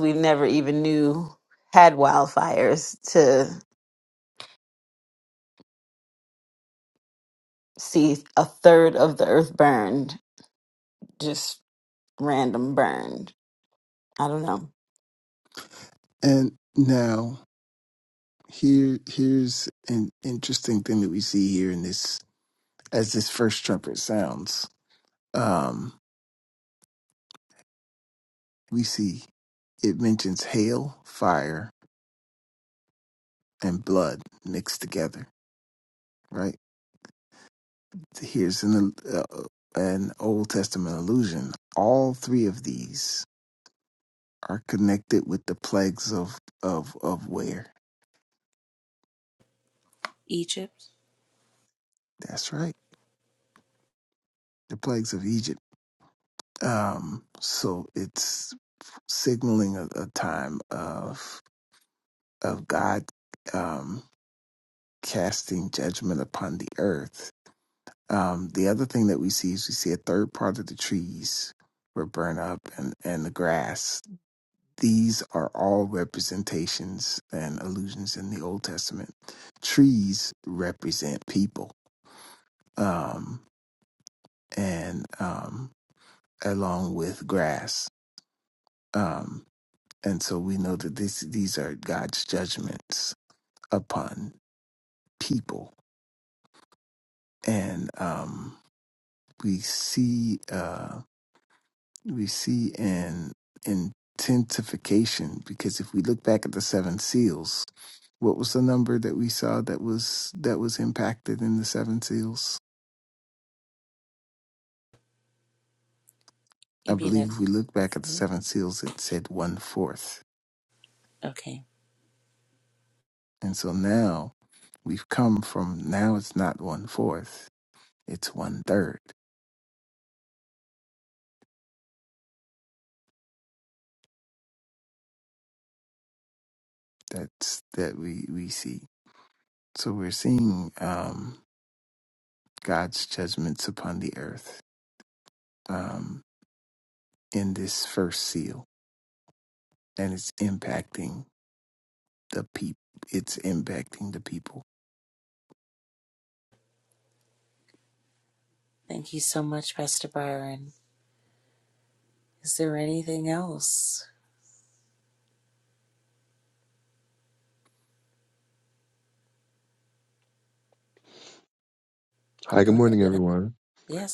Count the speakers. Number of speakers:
4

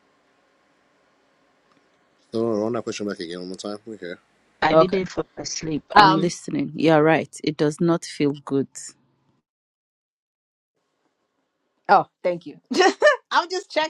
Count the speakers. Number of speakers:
3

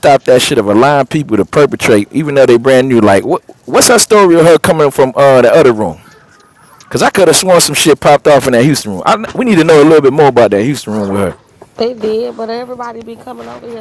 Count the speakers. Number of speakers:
2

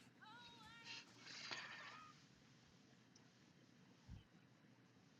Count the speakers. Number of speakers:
0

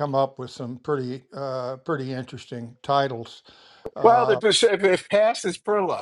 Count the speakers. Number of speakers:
2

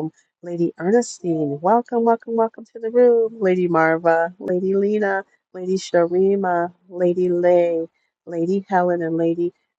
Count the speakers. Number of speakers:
1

